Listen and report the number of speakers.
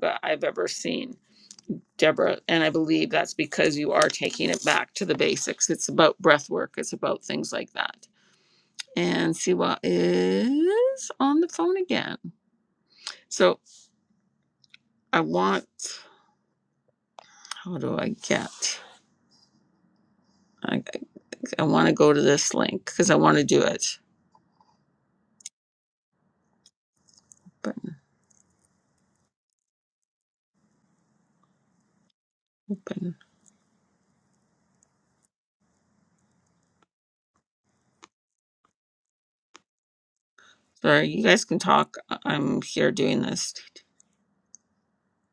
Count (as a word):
one